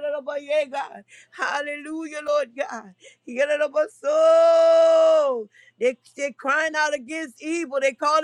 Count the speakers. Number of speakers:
one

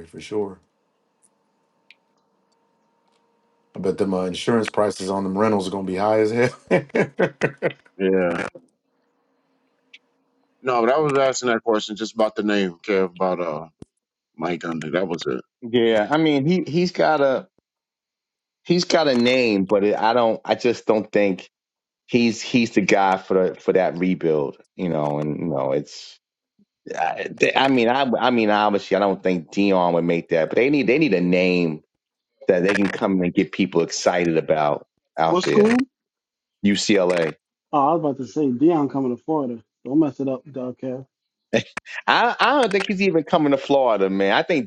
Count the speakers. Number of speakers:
four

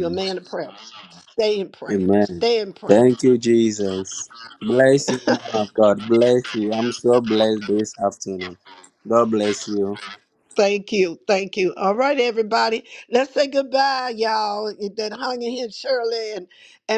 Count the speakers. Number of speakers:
two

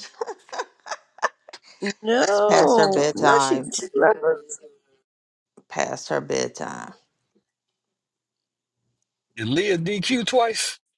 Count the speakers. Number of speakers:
three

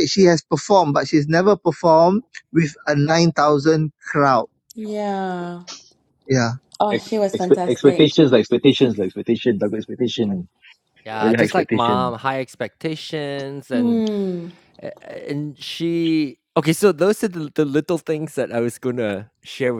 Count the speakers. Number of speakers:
four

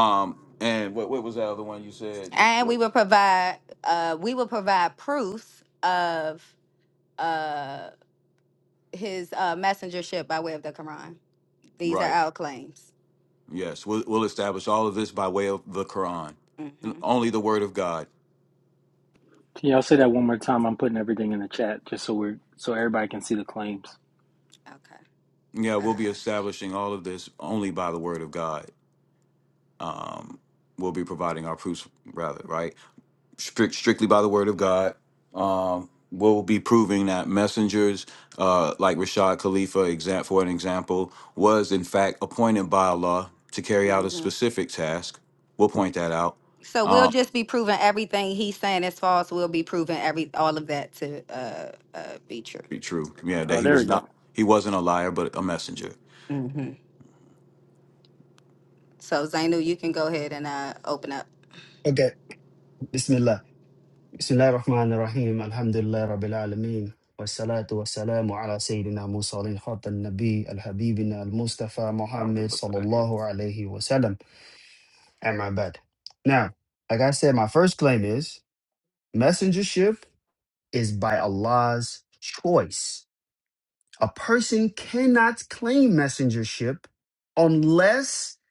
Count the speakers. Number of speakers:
four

